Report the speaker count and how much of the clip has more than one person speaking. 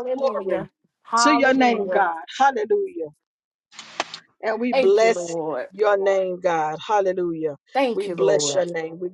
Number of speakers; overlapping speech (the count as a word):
two, about 30%